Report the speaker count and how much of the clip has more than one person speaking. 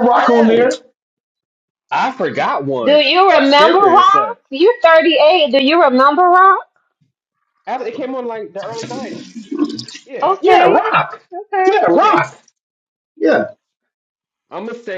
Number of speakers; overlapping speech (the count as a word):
three, about 20%